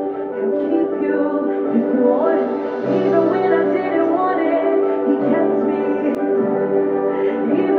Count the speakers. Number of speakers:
0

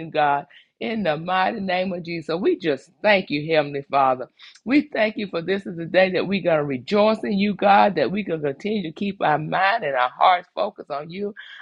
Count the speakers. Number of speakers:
1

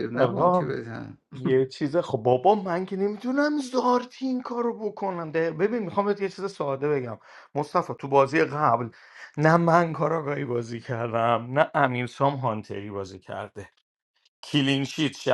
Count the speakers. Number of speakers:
2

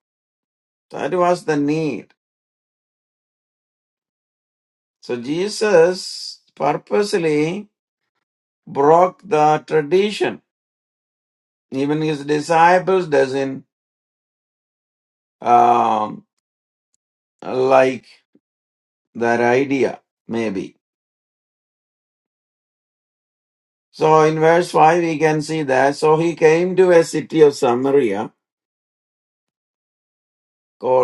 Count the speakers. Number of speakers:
1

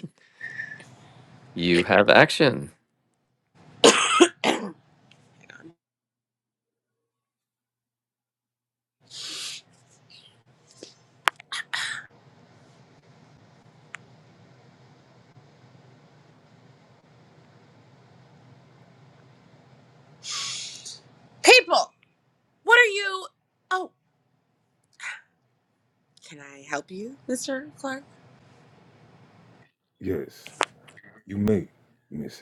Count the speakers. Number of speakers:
3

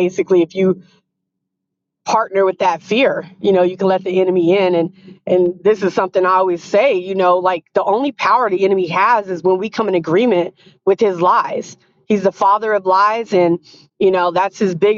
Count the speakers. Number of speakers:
1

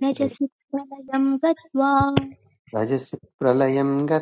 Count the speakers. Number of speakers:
2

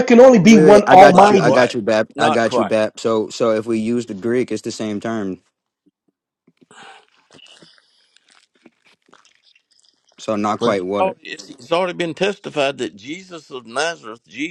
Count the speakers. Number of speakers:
3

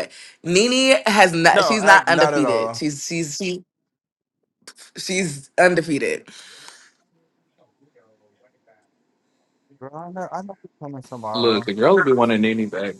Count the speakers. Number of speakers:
3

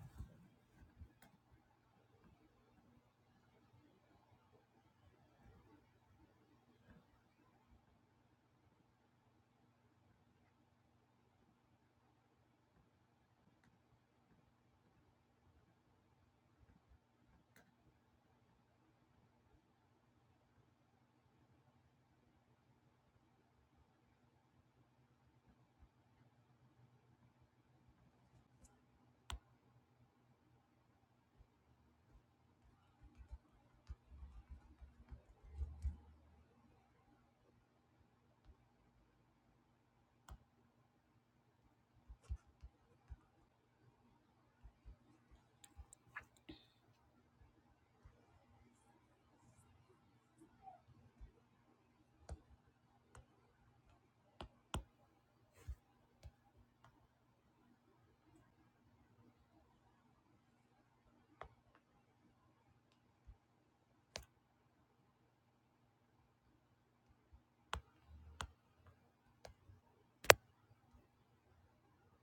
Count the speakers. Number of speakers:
0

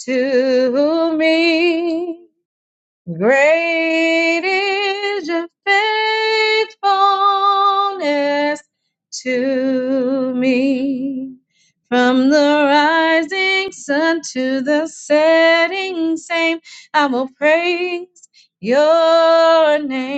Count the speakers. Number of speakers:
1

